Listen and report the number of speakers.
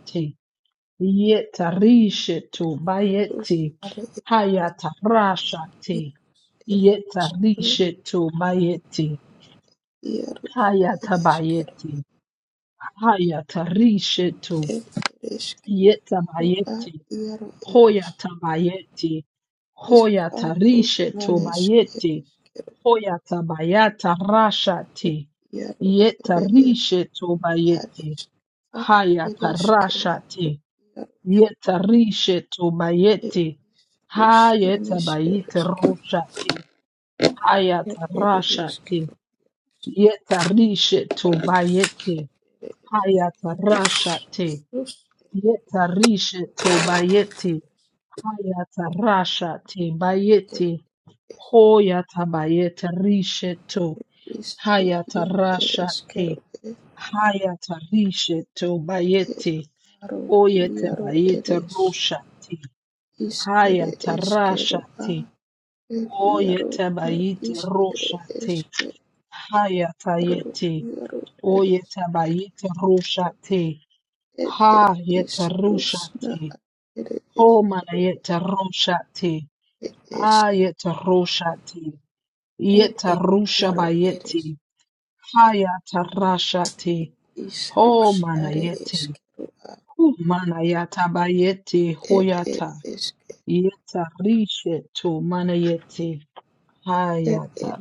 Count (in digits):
2